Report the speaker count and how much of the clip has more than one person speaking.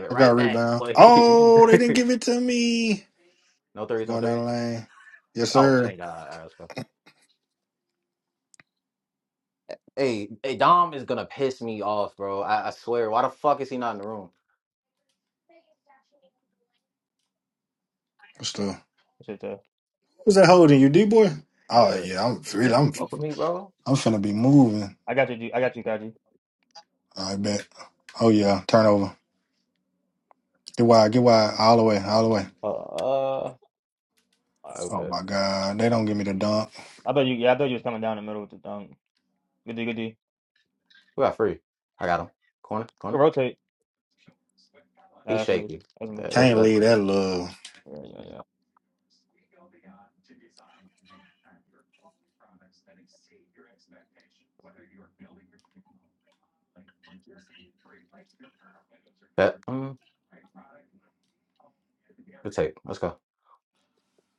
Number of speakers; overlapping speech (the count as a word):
three, about 6%